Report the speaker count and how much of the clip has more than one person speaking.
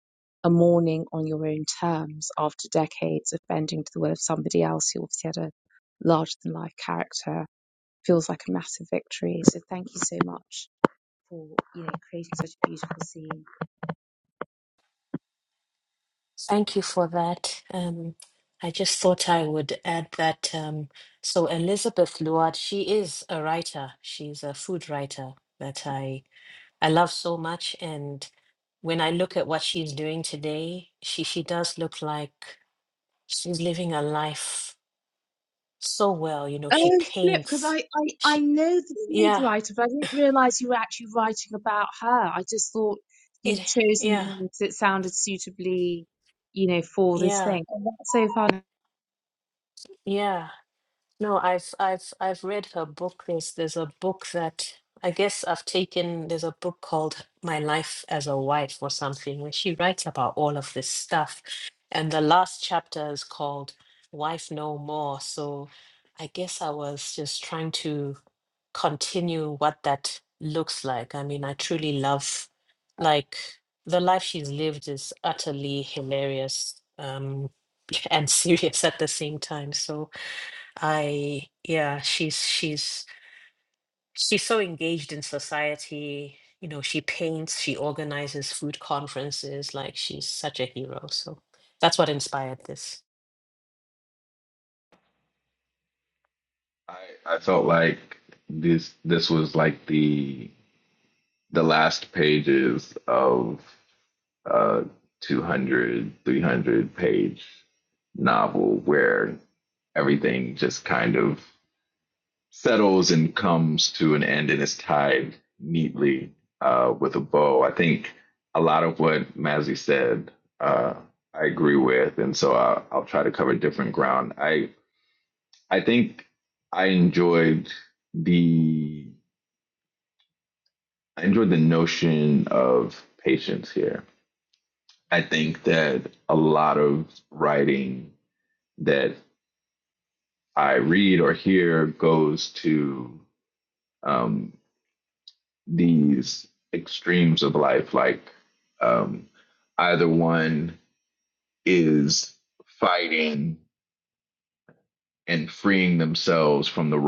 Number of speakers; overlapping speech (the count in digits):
3, about 2%